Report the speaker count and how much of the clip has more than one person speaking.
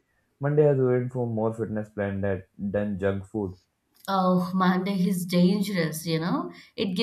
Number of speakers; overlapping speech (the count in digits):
2, no overlap